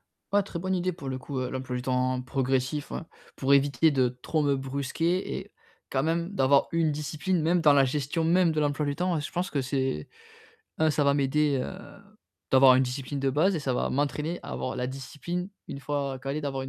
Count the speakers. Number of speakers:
1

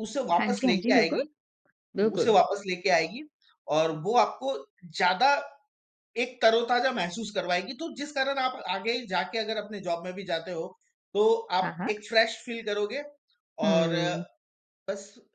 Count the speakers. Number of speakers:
2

